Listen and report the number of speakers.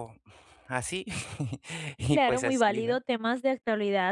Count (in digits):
2